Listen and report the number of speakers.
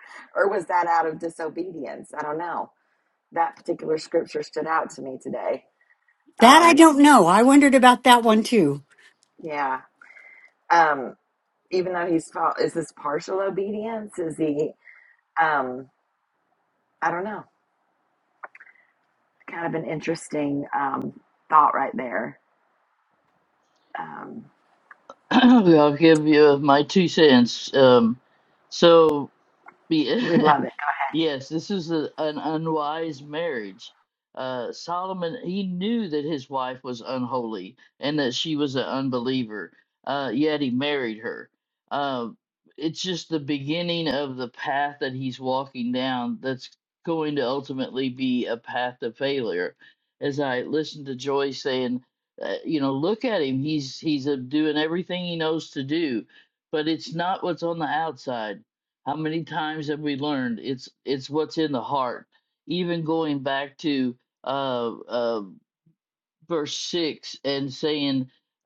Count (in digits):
3